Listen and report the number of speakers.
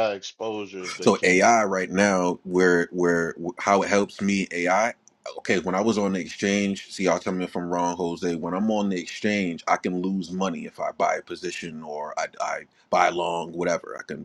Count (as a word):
two